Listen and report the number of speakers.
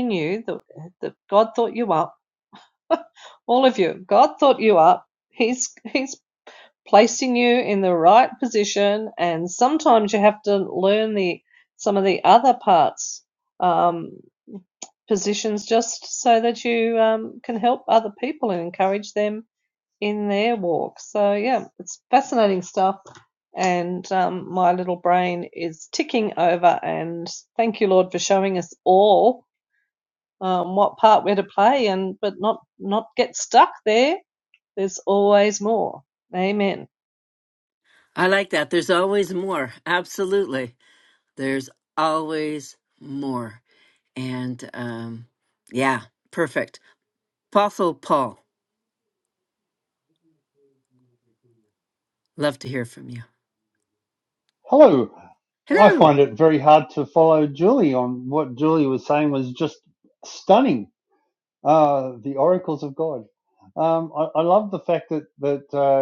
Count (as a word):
three